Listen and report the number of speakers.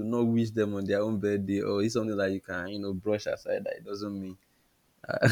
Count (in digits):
1